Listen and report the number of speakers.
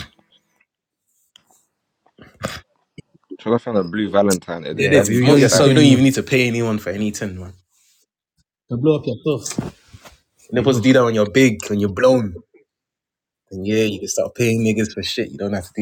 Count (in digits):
3